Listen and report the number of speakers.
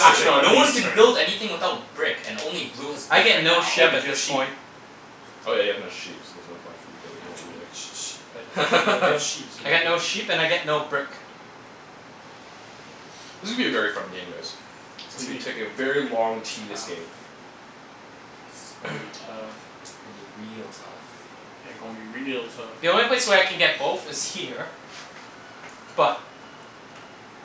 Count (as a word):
four